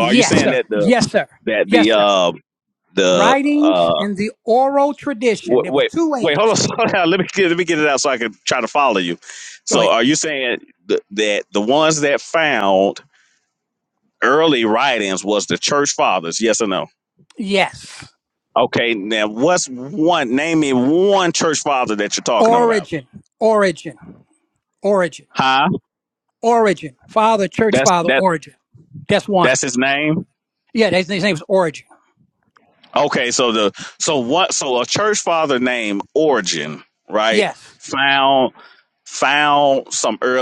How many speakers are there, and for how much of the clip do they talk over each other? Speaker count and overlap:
2, about 12%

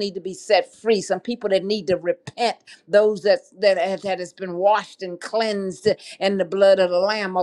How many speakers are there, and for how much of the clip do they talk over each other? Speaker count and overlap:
1, no overlap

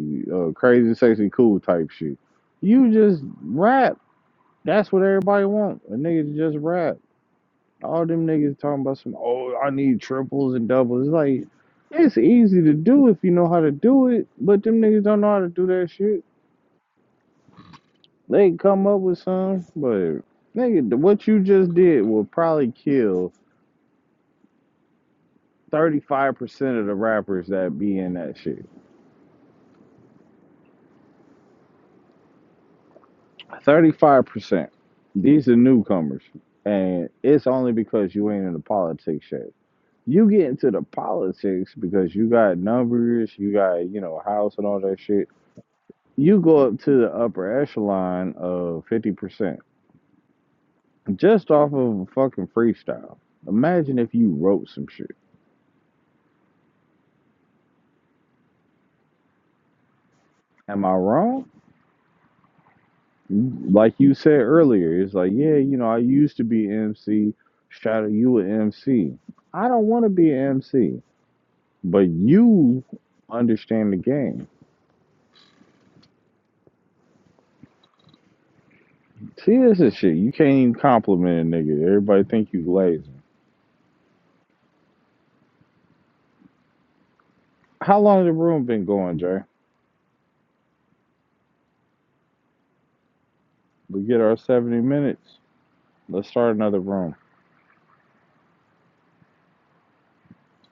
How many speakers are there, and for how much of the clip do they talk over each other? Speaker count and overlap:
1, no overlap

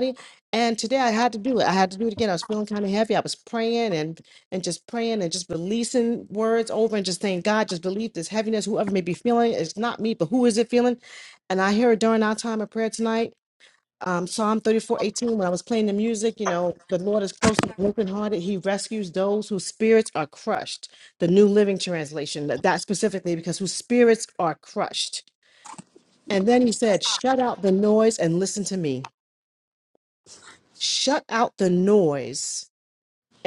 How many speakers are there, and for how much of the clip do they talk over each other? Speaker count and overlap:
1, no overlap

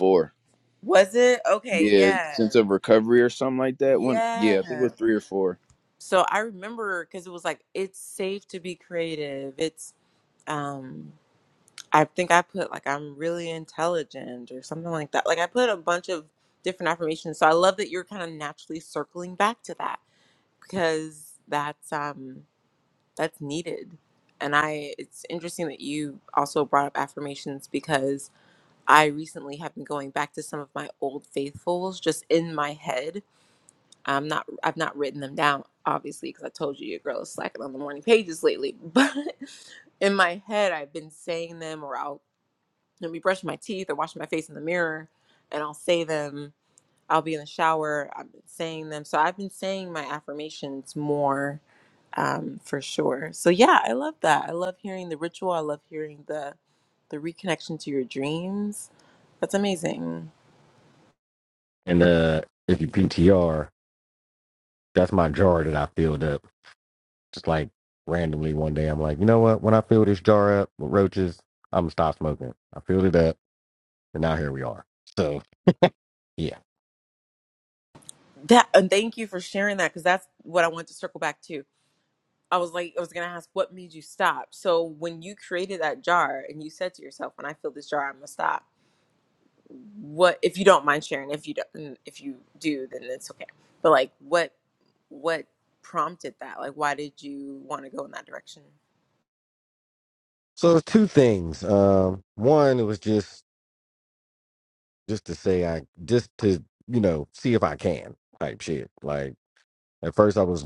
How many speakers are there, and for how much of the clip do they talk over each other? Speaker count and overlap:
3, about 1%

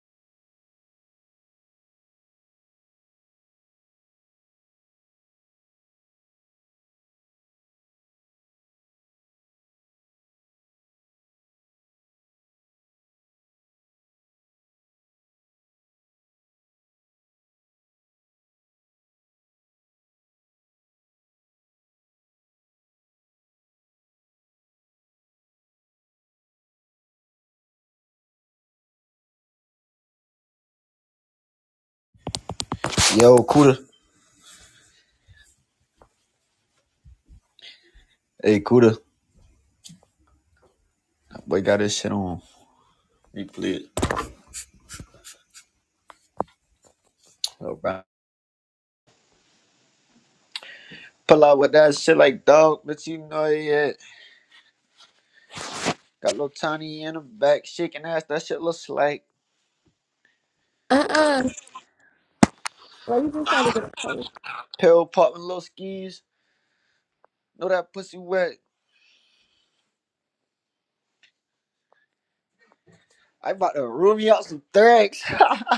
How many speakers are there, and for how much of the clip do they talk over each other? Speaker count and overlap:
2, no overlap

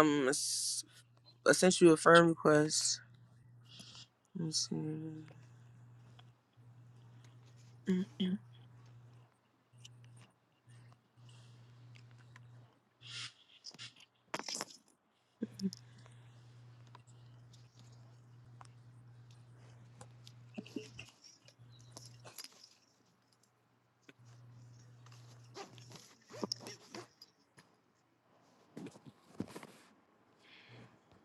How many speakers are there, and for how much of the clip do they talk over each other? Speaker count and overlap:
1, no overlap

